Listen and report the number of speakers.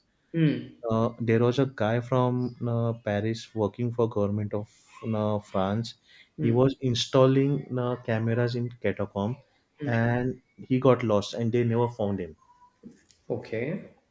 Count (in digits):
2